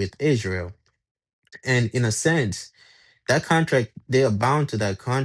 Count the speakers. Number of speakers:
1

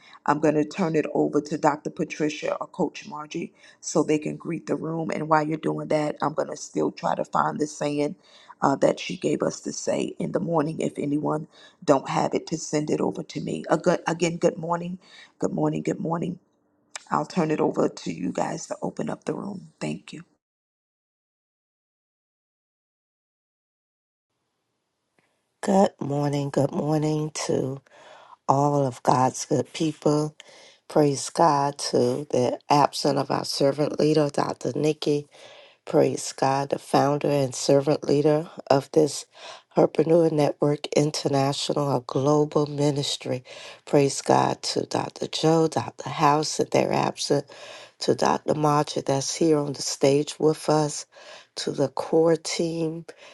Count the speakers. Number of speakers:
2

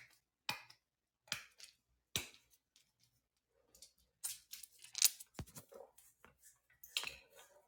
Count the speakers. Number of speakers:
0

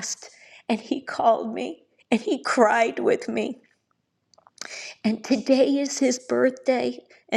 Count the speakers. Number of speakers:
1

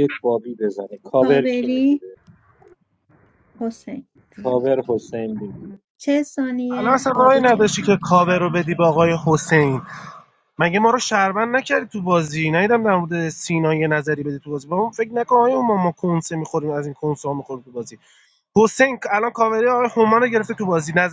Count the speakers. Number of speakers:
3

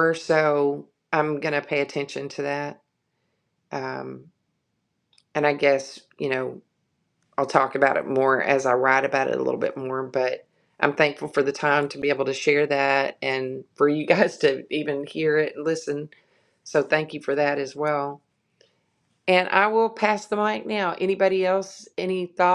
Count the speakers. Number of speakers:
1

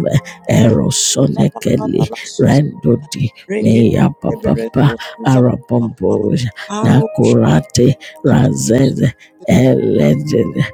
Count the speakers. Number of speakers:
2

